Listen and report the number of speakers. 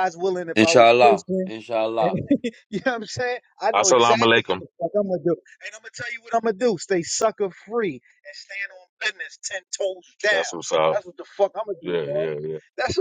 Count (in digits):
3